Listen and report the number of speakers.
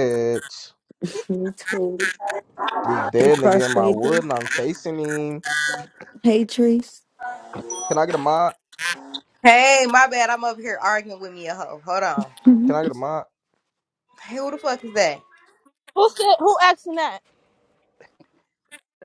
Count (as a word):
four